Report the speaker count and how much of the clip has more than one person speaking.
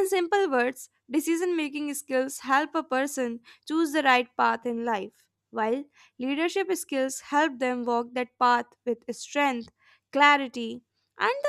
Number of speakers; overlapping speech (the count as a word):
one, no overlap